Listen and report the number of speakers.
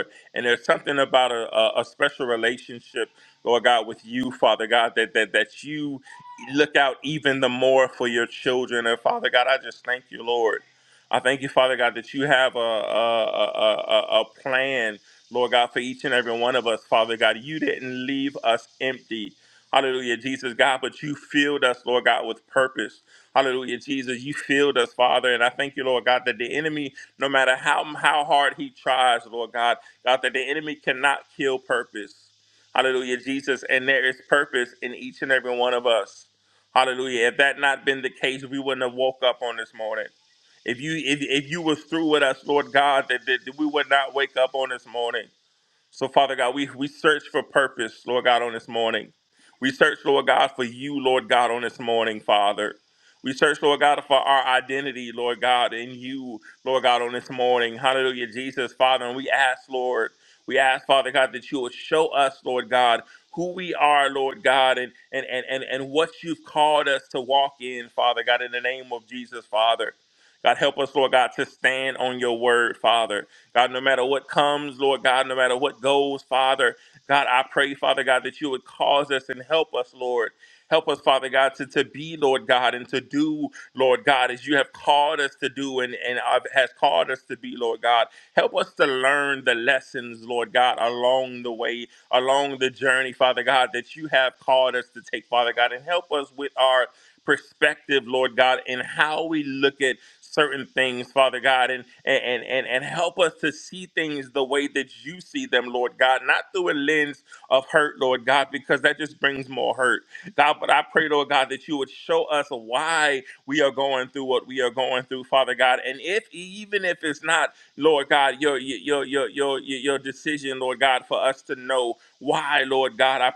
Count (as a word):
one